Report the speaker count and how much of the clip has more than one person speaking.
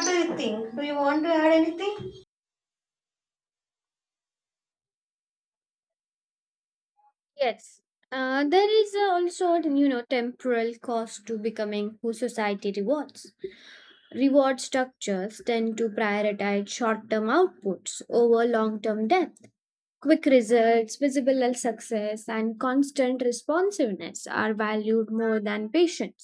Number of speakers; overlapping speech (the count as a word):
two, no overlap